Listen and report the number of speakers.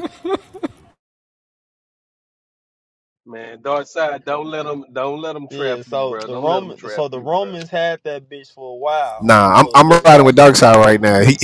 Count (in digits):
3